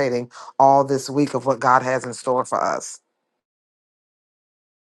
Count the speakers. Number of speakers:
1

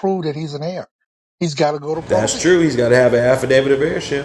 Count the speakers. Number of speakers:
2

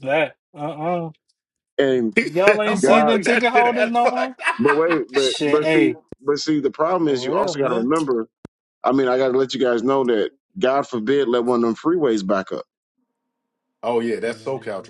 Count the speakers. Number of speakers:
3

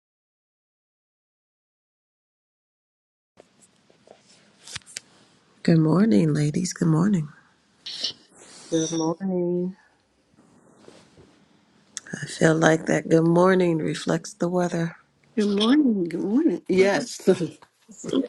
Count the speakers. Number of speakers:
3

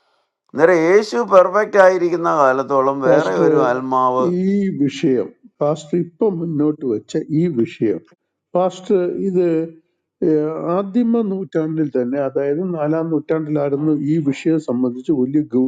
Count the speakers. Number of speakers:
2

